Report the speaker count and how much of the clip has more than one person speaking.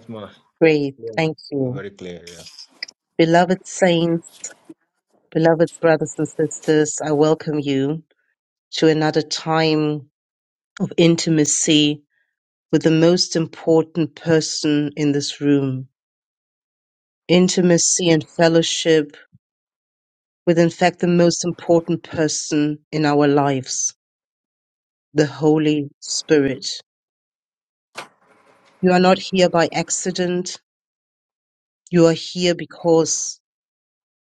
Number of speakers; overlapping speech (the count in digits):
2, about 1%